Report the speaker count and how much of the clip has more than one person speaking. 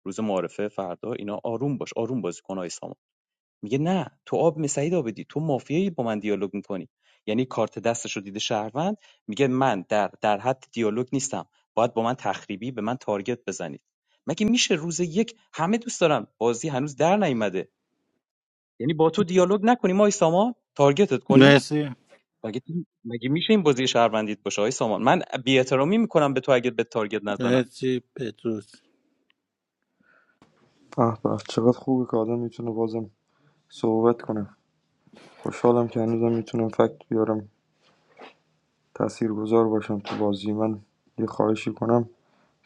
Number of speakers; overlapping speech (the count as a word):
three, about 1%